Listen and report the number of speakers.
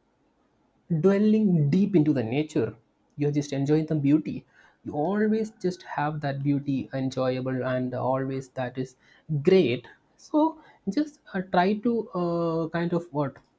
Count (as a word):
one